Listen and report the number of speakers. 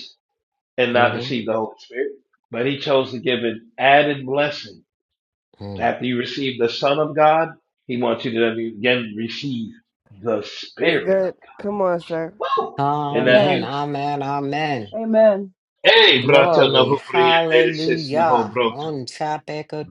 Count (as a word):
four